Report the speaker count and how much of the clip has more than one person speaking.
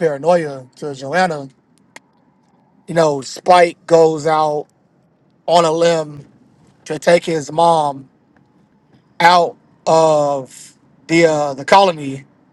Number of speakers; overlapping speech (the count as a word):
one, no overlap